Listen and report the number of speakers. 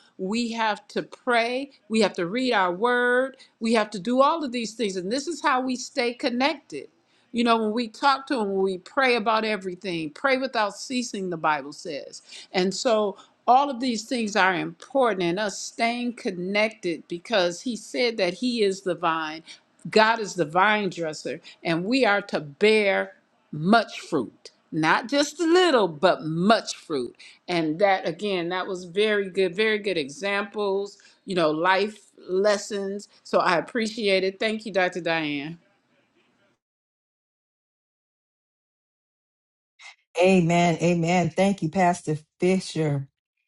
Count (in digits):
2